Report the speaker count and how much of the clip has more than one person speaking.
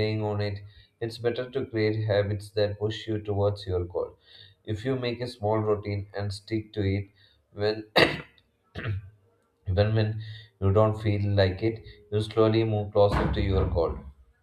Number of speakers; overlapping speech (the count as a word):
one, no overlap